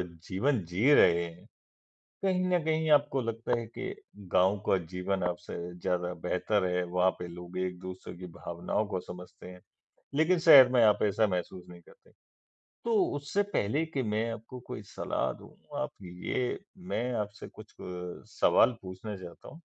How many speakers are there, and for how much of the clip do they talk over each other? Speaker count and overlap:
1, no overlap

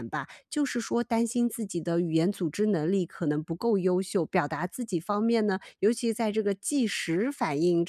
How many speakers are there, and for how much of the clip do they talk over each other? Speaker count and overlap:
1, no overlap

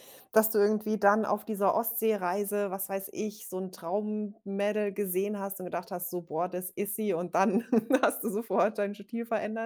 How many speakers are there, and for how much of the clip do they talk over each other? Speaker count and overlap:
1, no overlap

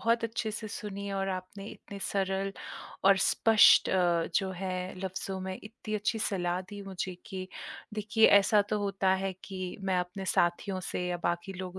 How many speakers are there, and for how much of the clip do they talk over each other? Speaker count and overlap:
1, no overlap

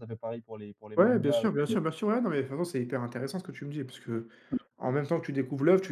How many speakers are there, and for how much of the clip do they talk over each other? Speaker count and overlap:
2, about 9%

